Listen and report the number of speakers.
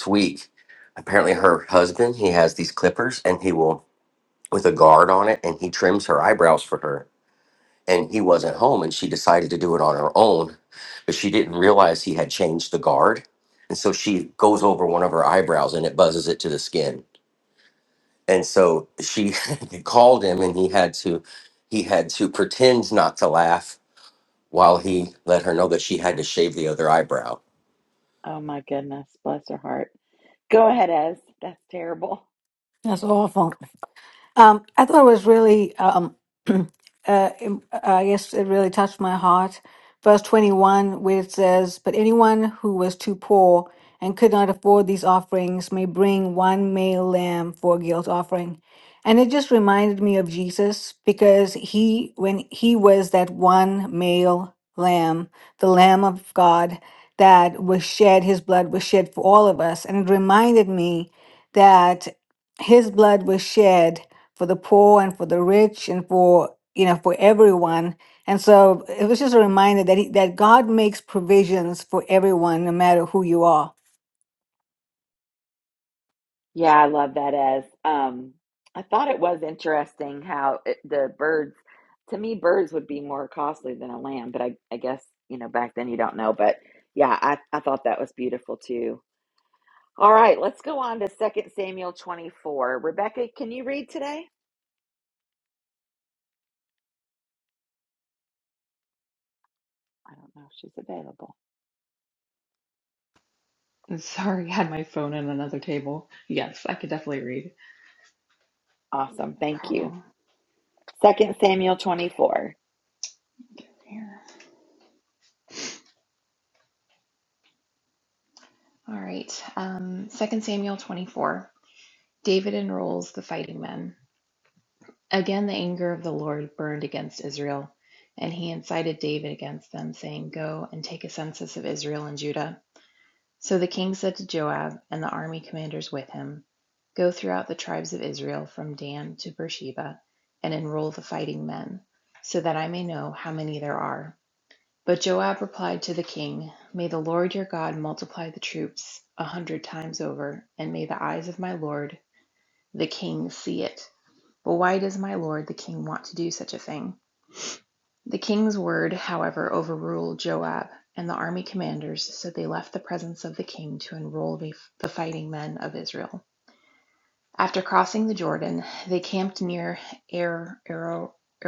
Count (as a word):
four